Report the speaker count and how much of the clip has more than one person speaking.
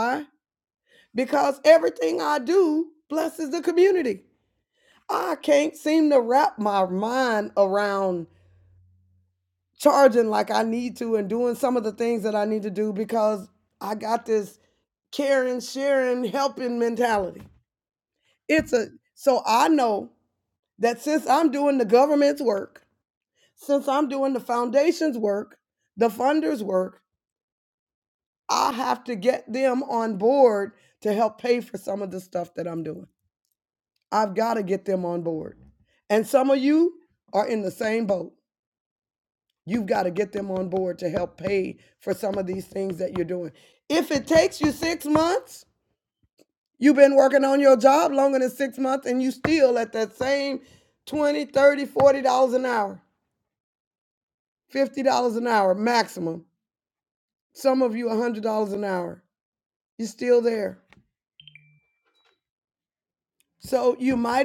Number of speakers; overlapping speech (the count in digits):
1, no overlap